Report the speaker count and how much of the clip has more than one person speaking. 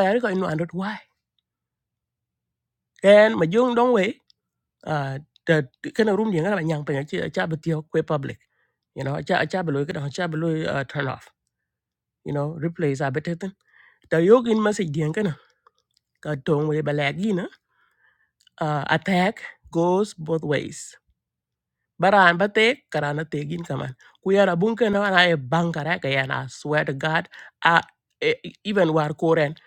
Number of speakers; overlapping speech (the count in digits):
1, no overlap